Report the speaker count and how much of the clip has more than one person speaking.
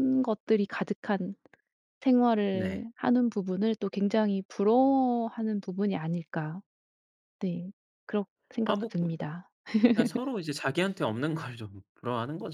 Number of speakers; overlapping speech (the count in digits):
2, about 4%